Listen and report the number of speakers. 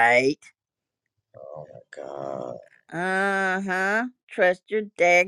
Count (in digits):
2